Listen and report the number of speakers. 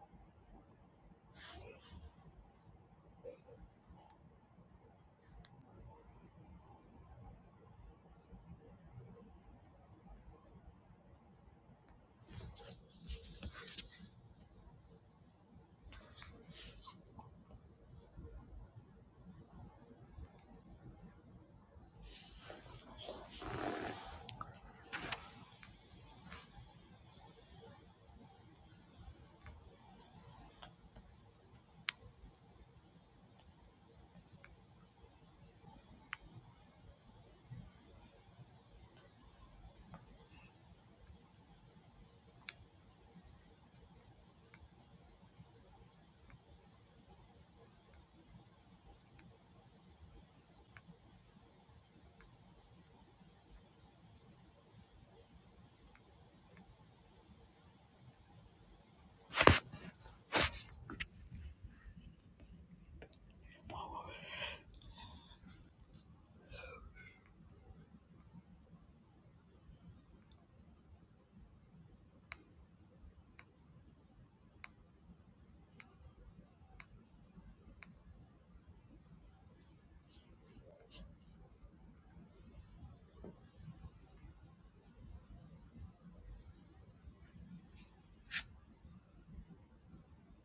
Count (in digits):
0